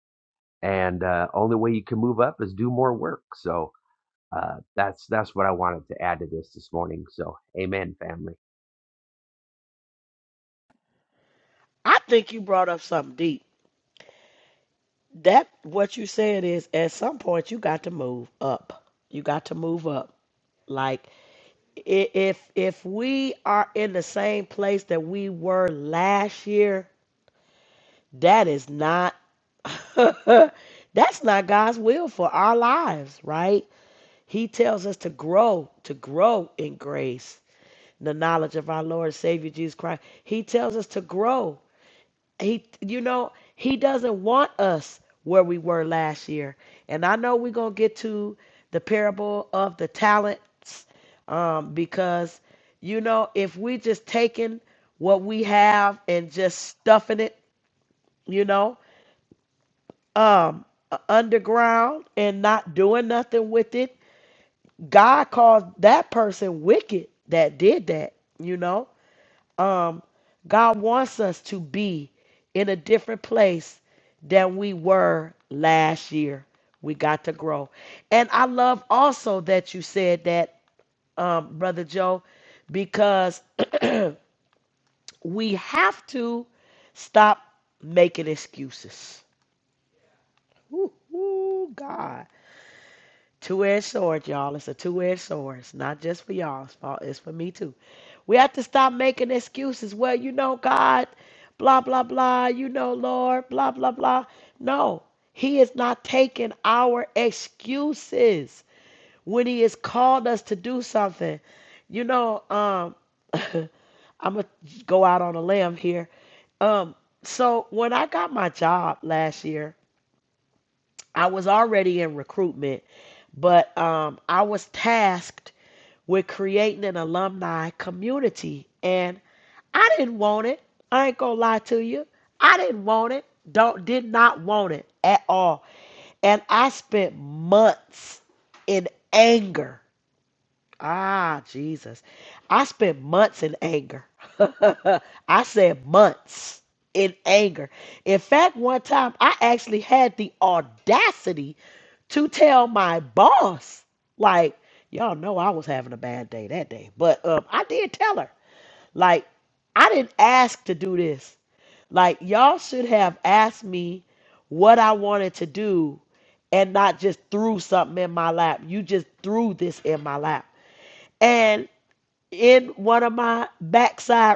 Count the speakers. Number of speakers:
two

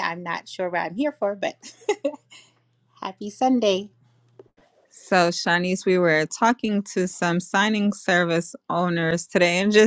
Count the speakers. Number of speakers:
two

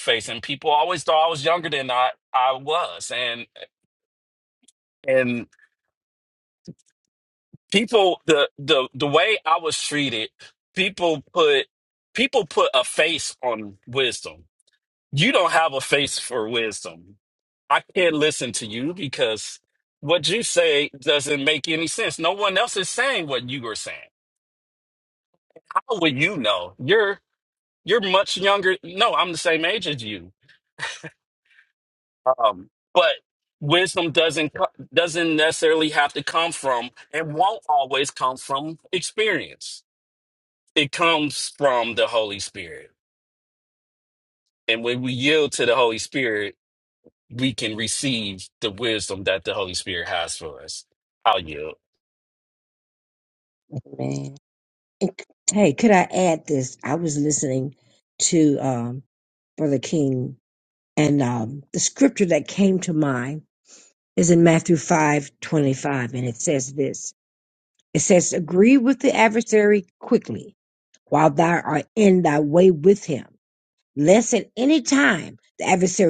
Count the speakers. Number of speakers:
two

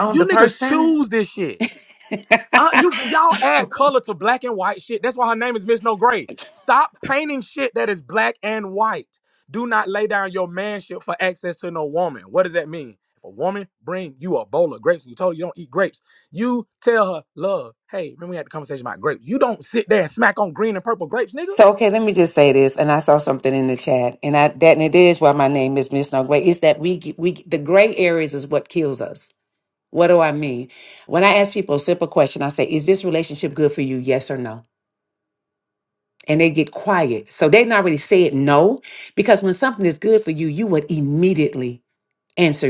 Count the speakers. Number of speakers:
two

